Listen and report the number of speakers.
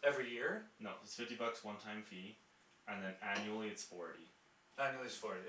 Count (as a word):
two